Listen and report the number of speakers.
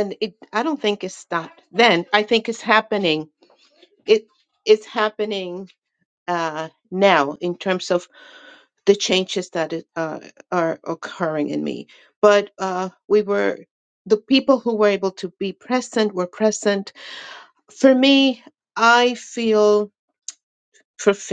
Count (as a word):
one